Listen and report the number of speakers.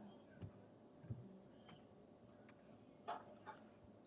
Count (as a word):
zero